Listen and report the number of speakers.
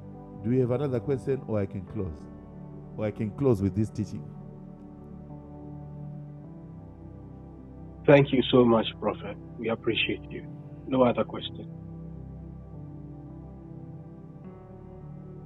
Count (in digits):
2